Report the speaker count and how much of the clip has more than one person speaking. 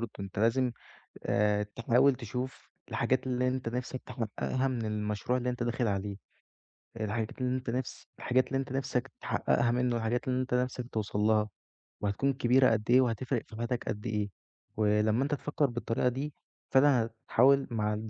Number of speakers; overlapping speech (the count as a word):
one, no overlap